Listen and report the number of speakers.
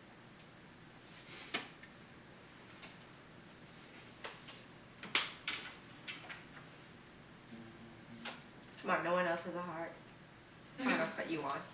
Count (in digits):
1